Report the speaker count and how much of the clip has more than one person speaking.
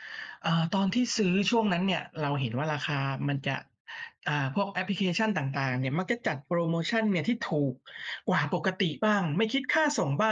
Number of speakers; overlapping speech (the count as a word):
one, no overlap